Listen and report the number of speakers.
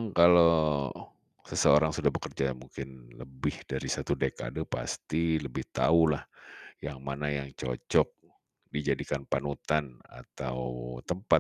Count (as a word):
one